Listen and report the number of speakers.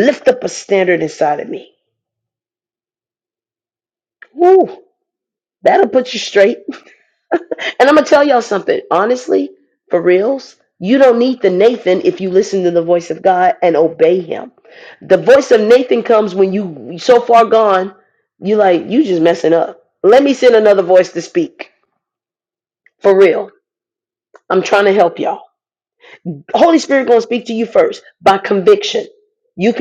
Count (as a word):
one